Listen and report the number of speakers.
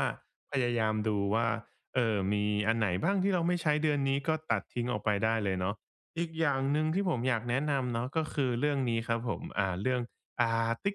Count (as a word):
one